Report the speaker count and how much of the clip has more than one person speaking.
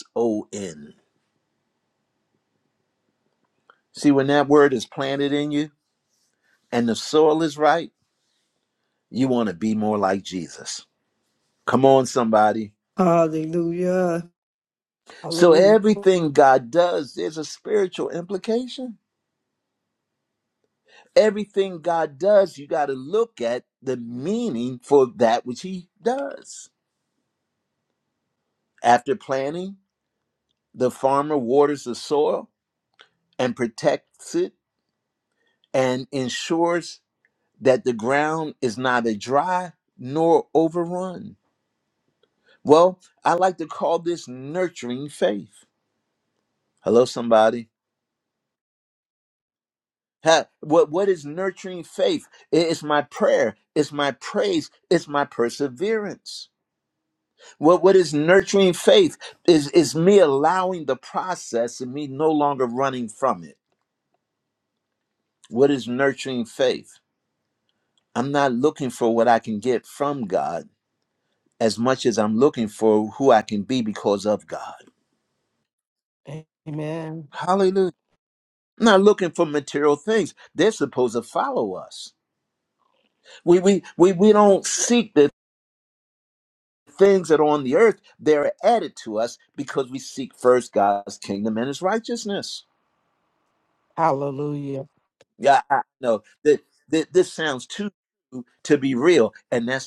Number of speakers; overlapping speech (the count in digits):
3, under 1%